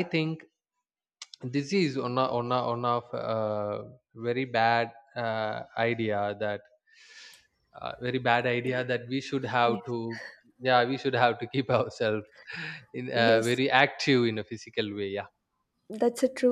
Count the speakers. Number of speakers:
2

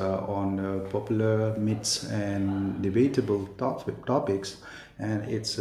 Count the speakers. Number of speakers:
1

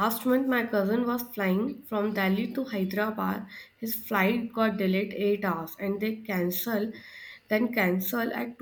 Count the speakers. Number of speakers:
1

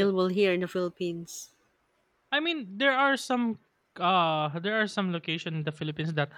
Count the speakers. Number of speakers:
2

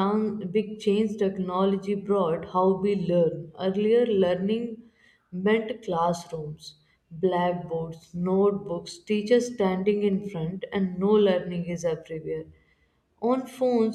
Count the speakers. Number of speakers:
1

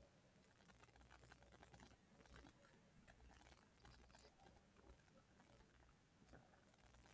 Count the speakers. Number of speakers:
0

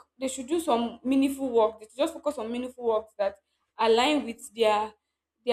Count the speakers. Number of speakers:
1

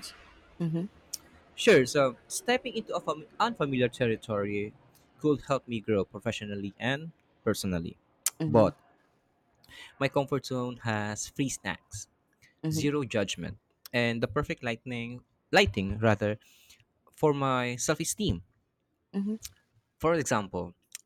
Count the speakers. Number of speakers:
2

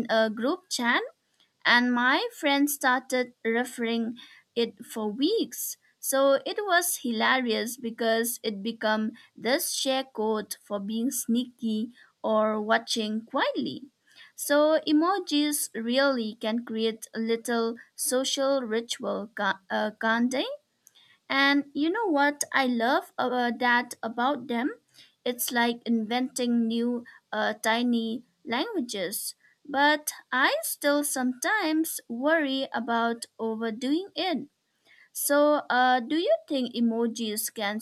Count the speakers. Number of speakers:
1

